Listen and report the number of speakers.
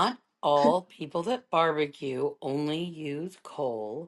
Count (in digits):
1